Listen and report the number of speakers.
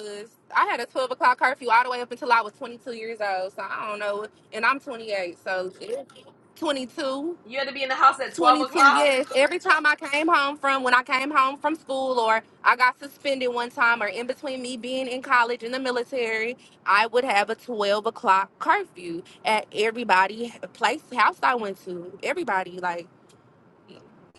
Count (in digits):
2